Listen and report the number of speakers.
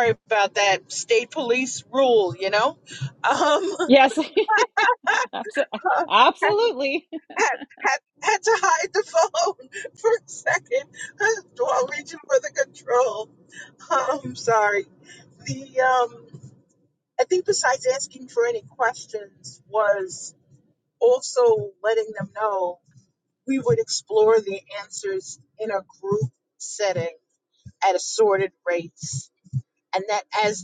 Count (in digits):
2